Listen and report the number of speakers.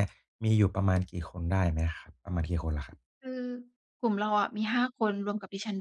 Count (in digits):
2